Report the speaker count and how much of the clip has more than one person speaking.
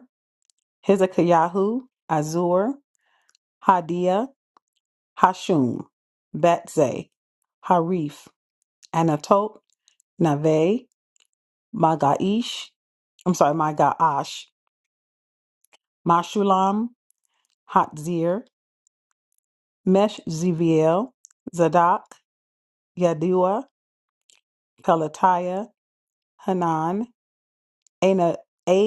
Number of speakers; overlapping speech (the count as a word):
one, no overlap